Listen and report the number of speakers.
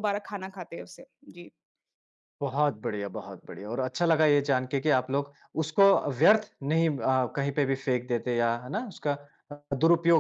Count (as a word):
two